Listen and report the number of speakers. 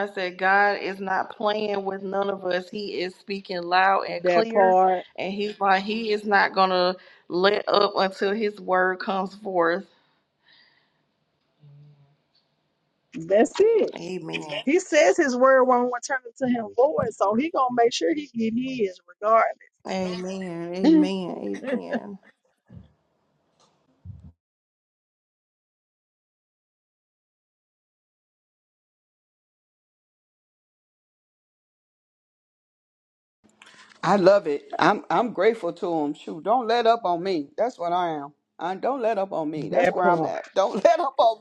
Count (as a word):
three